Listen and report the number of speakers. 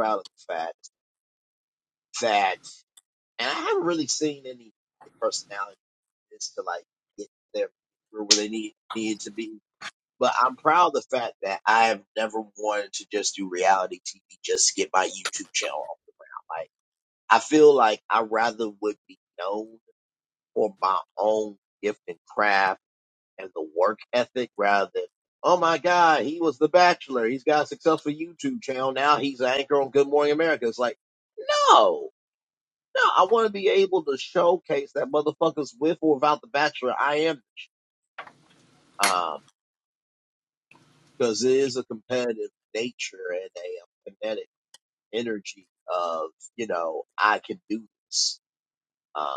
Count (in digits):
1